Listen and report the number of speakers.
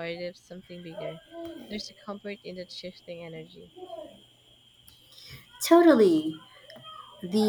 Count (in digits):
2